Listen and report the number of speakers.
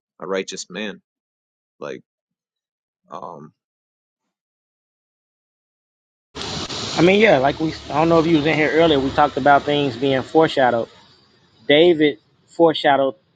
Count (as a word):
two